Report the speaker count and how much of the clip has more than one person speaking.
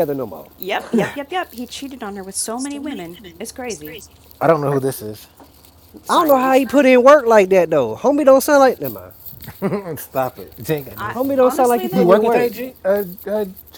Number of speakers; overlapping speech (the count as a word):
three, about 14%